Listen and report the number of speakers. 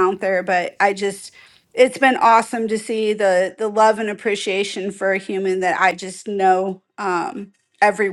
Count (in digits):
1